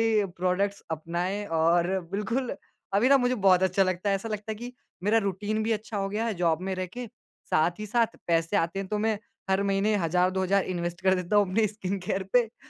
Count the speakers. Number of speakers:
one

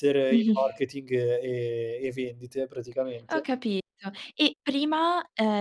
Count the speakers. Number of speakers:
two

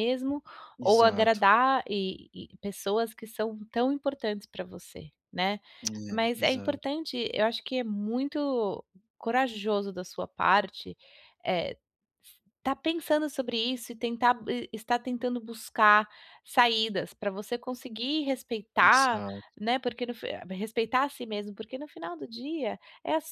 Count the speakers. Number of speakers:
two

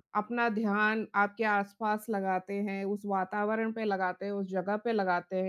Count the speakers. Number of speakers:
one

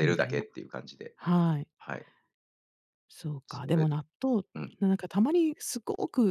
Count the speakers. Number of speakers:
two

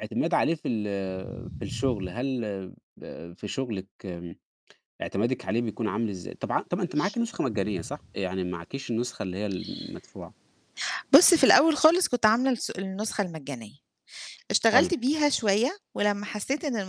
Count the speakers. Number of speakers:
two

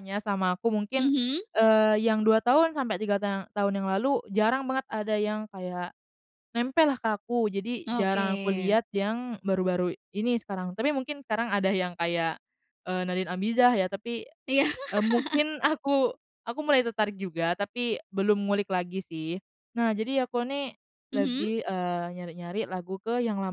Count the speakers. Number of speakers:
two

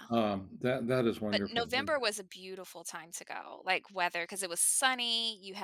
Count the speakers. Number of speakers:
two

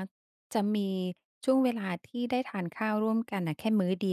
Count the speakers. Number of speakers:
one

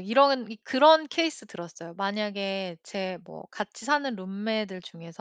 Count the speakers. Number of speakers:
one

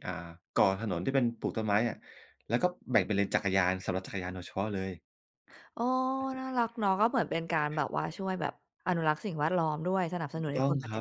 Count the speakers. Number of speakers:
two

